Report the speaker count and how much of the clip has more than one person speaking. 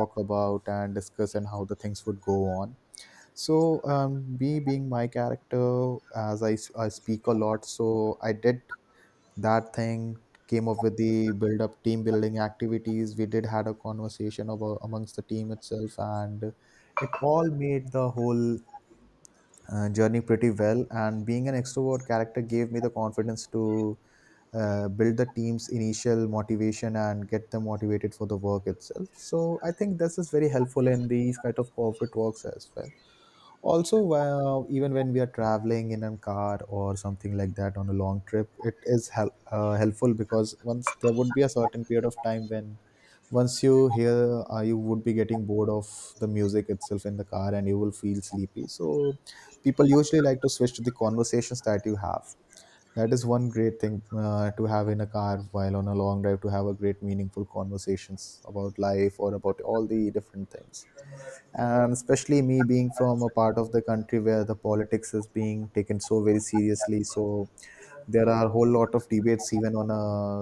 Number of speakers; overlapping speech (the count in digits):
1, no overlap